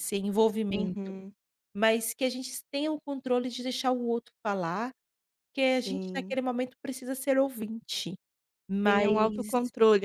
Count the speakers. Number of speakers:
2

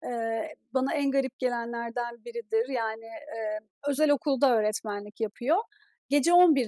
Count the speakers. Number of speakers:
1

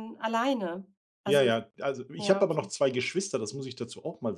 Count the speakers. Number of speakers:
2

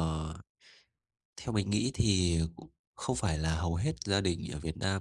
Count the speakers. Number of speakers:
1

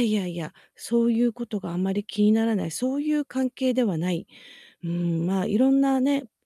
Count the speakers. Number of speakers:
1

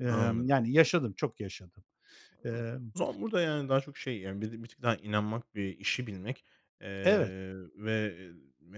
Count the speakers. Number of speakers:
2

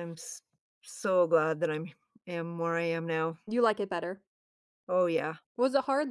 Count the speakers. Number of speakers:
2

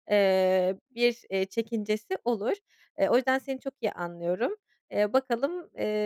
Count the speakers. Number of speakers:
1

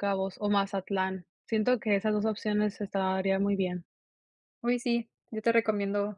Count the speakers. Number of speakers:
2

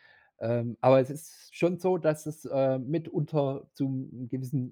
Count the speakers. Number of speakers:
1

